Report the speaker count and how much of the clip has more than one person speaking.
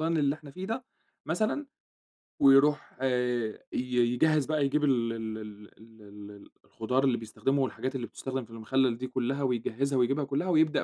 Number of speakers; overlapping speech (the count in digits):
1, no overlap